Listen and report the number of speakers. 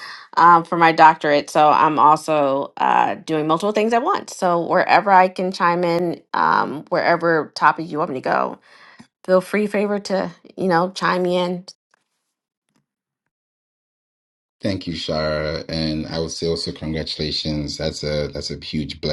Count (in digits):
2